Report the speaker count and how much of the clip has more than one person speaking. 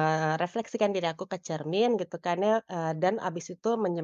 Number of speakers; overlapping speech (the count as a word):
one, no overlap